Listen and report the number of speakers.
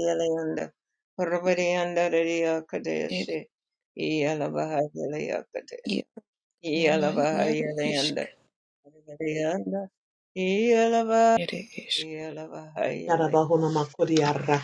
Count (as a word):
three